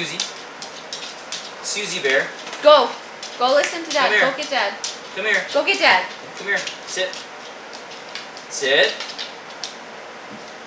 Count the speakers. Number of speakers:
2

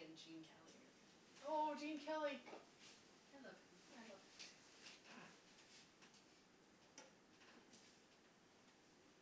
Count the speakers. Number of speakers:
2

